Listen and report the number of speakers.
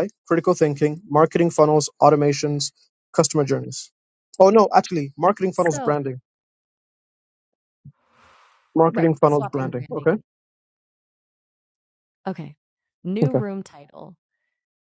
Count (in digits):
2